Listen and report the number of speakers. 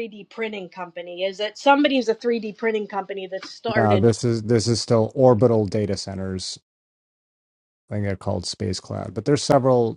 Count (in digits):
2